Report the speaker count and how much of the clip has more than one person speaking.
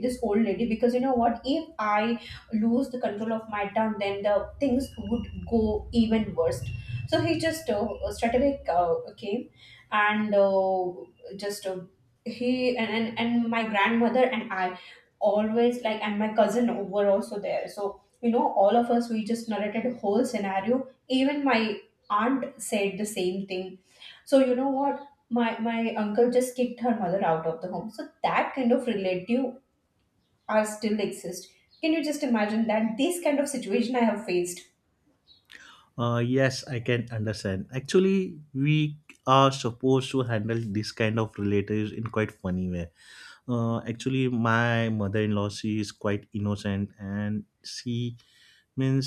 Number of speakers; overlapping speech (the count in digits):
2, no overlap